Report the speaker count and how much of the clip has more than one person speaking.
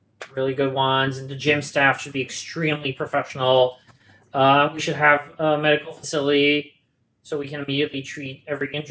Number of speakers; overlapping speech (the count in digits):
1, no overlap